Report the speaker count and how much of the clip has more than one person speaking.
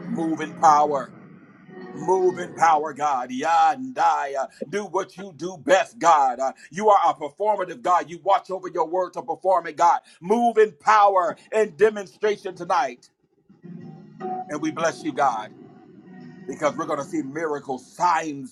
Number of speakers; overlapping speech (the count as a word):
one, no overlap